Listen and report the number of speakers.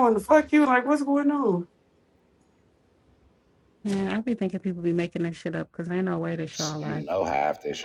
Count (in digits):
3